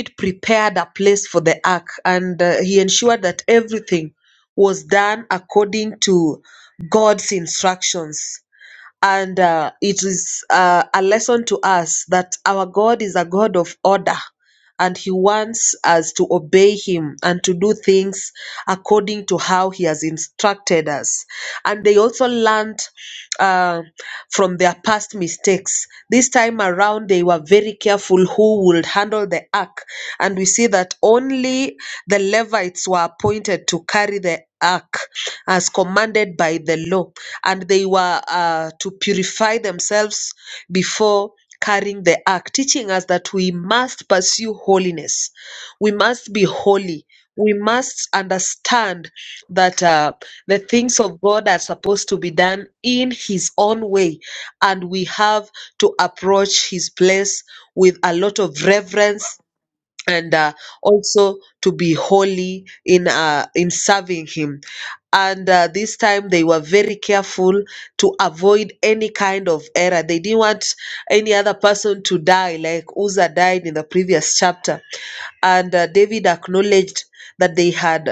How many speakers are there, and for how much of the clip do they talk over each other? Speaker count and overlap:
1, no overlap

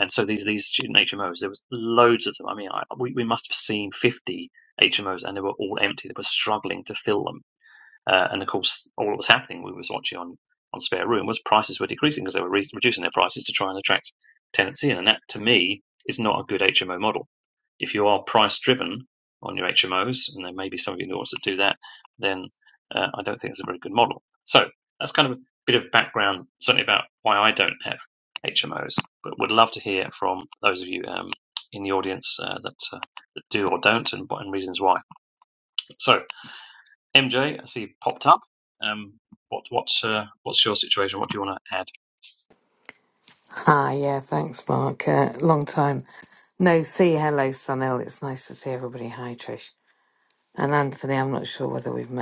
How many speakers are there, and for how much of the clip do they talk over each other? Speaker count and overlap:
2, no overlap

